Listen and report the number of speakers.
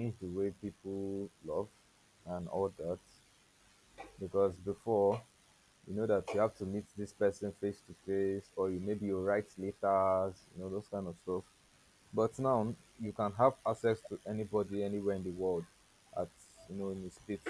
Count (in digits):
1